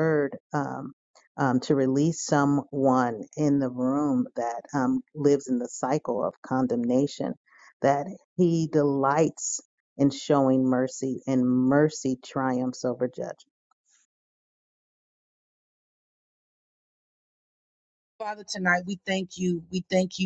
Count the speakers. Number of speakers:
2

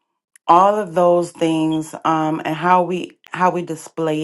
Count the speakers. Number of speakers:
1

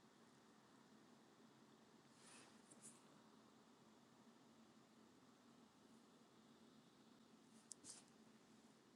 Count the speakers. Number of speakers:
0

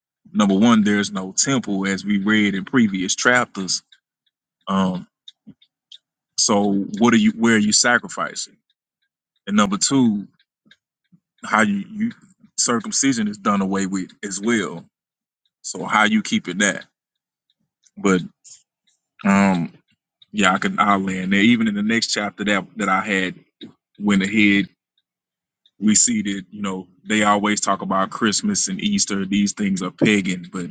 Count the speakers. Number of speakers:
1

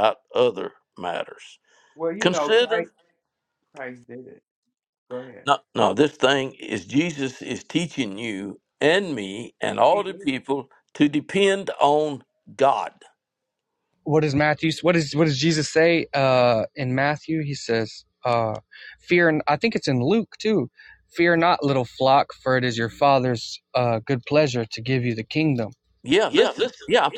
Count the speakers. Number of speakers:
3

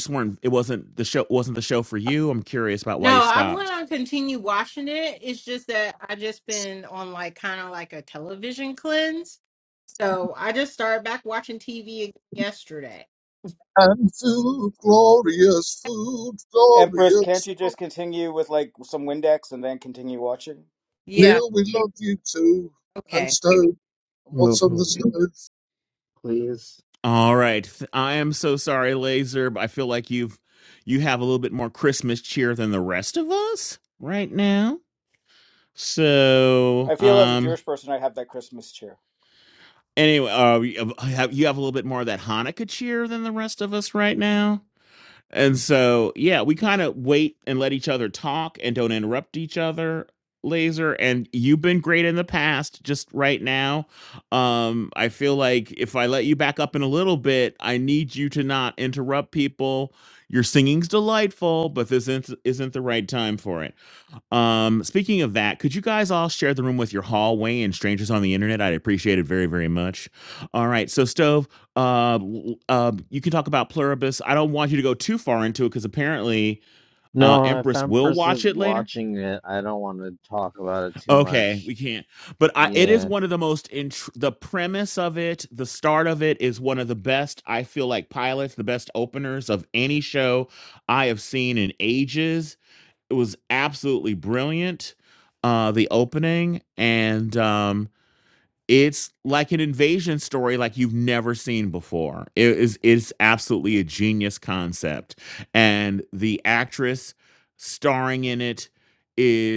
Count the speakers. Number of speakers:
5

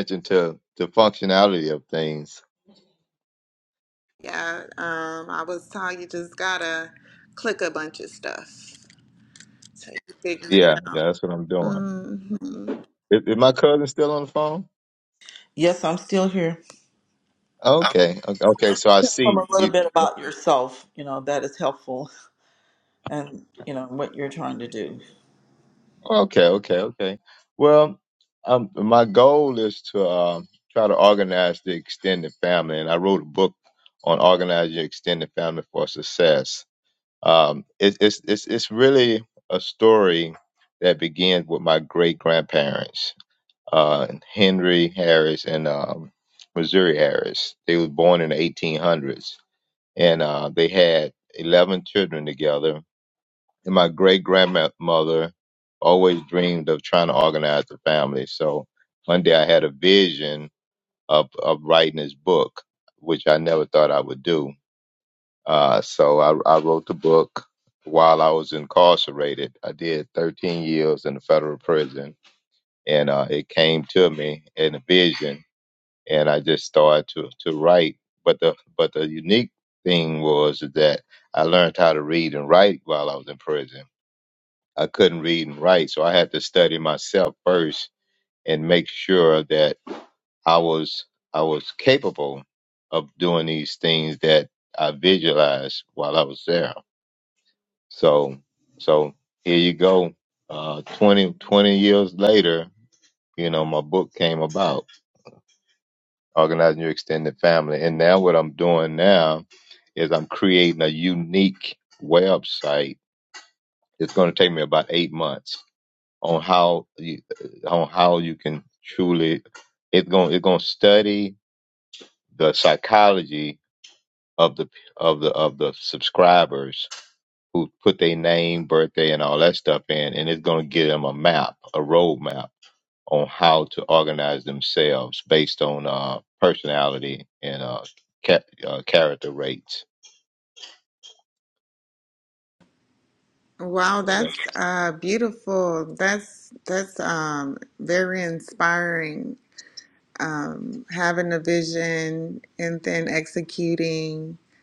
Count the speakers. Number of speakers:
3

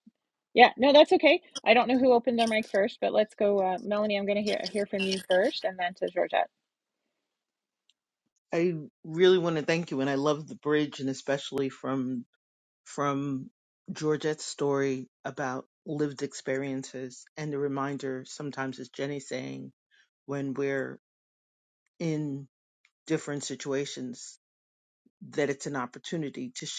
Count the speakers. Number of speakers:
2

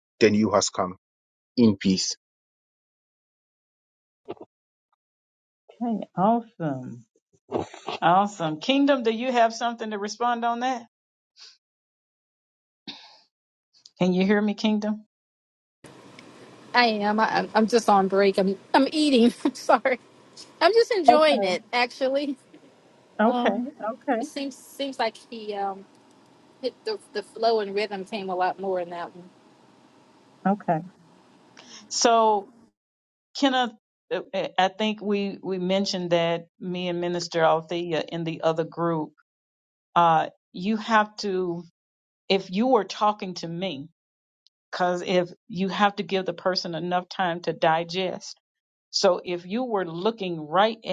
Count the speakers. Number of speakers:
3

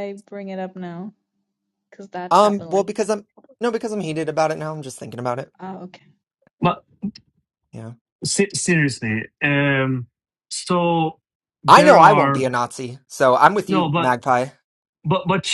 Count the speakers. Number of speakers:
3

